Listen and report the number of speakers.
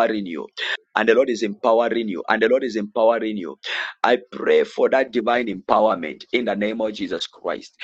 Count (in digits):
1